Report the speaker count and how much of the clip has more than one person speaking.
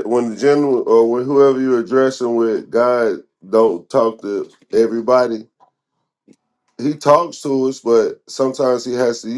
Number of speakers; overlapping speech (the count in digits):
1, no overlap